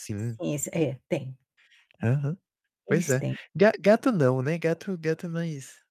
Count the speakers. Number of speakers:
two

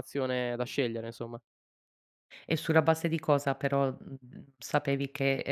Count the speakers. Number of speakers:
two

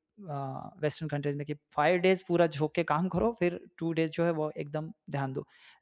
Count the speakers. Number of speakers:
one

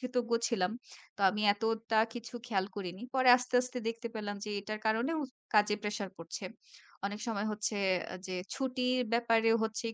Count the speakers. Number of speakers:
one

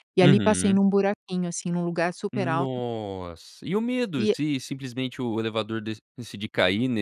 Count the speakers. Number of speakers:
two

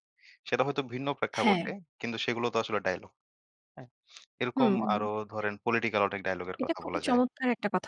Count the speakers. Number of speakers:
two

